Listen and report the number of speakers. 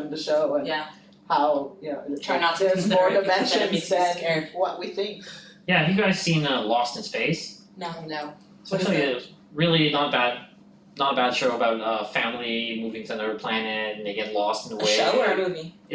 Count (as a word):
three